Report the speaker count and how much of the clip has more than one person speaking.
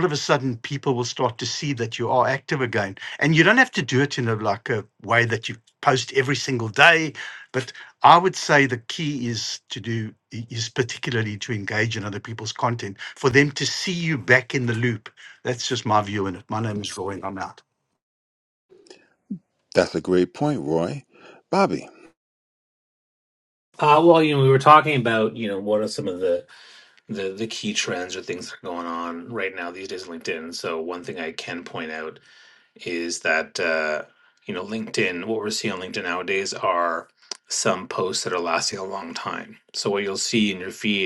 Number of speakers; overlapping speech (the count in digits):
3, no overlap